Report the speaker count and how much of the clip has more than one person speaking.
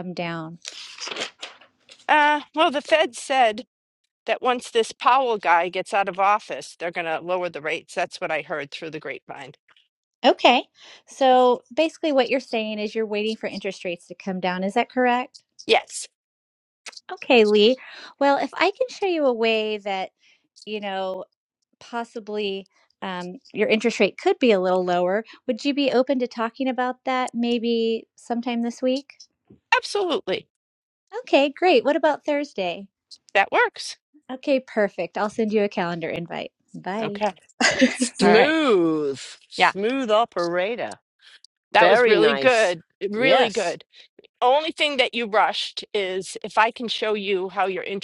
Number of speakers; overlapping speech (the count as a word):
three, about 4%